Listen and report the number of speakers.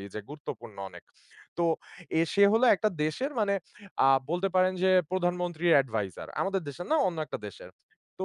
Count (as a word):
one